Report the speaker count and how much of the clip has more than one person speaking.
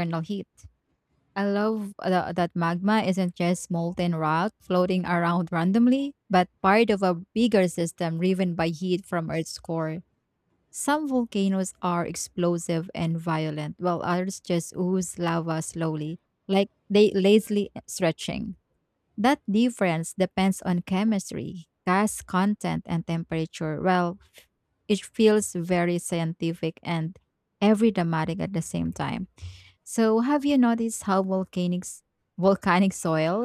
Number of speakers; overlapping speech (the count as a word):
one, no overlap